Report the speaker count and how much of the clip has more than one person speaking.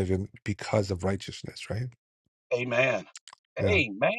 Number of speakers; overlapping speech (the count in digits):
2, about 5%